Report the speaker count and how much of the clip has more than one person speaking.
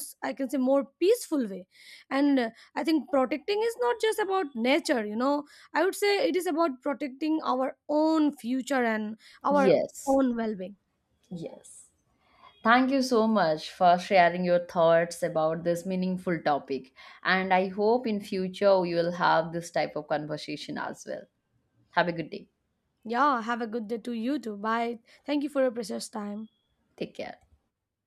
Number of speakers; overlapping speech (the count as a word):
two, about 1%